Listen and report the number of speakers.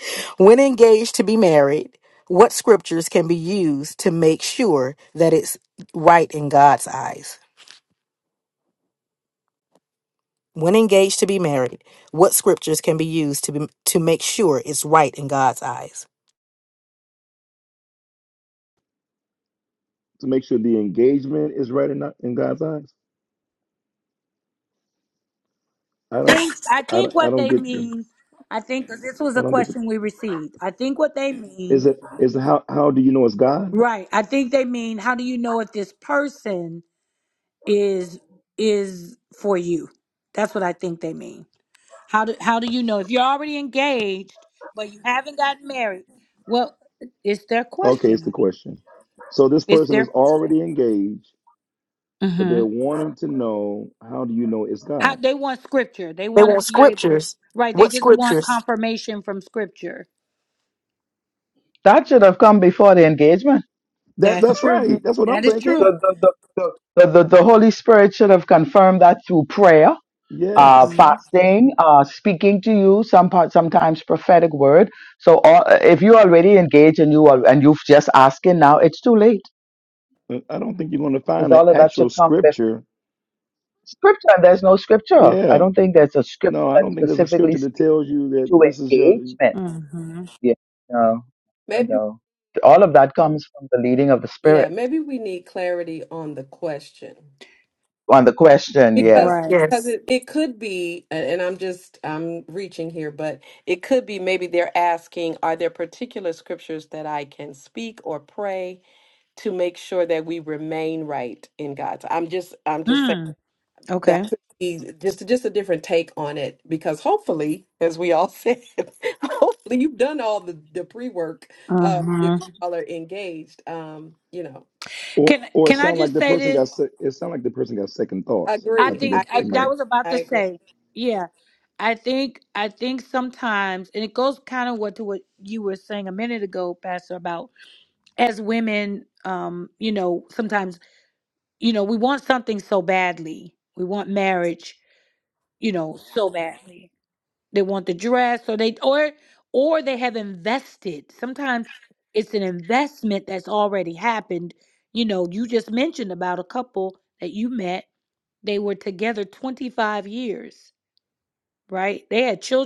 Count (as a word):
five